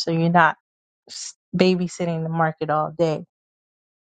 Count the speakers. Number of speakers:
1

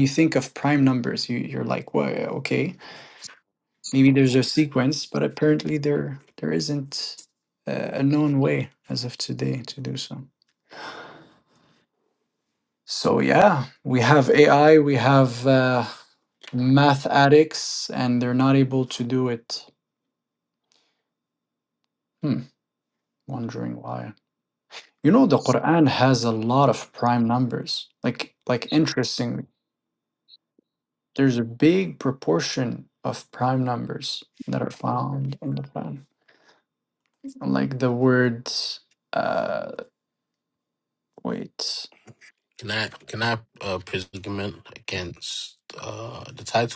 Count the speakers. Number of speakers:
2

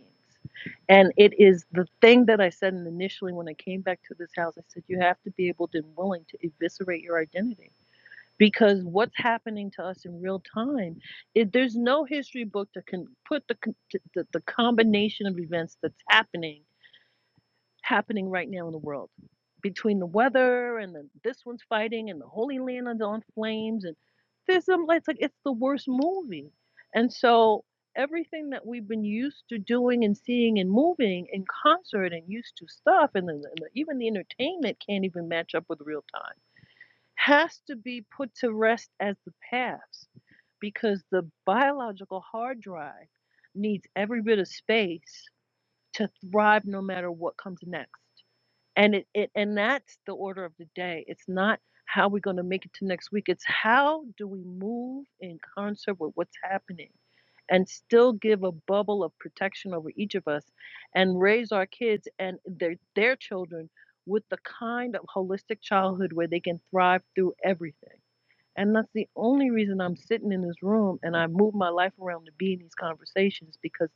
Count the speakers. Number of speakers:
1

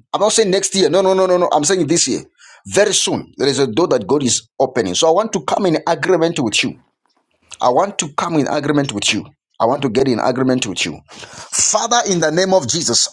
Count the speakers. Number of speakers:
1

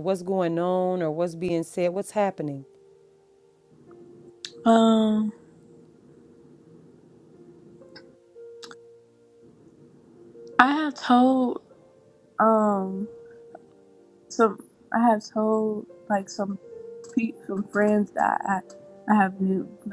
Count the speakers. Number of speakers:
2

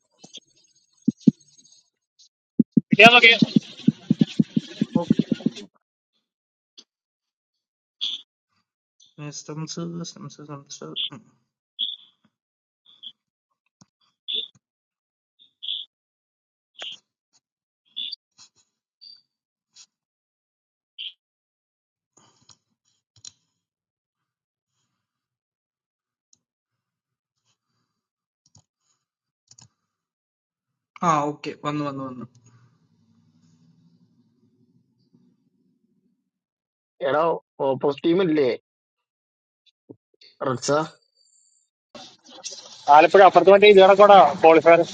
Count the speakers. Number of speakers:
3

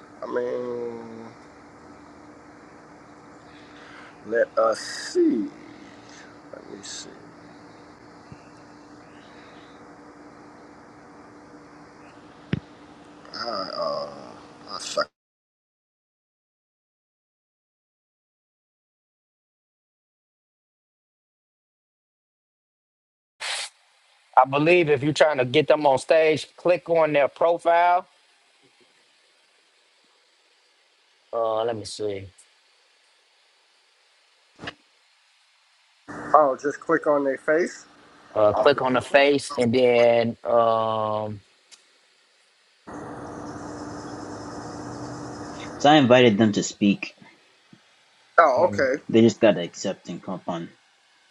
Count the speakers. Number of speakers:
3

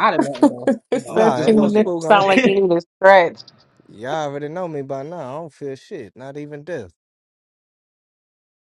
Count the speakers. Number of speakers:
3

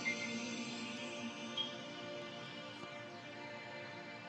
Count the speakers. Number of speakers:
0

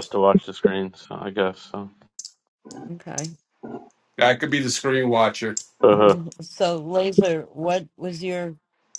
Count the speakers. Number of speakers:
3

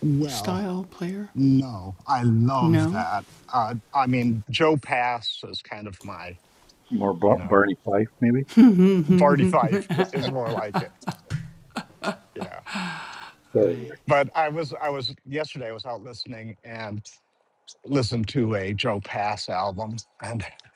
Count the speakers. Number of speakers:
3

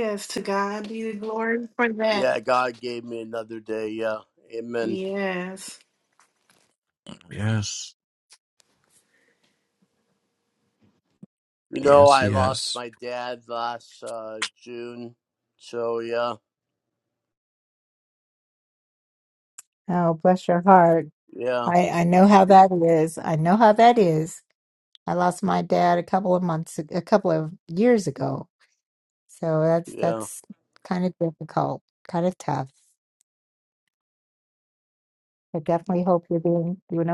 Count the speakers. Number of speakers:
4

